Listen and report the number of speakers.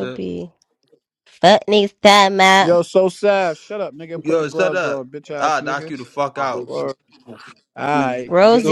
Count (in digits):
3